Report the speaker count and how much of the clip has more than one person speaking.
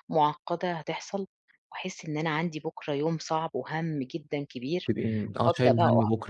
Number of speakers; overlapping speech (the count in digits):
2, about 12%